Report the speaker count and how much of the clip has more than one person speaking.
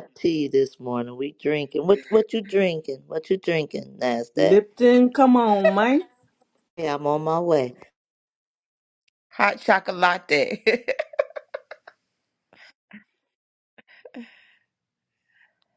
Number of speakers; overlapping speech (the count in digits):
3, about 1%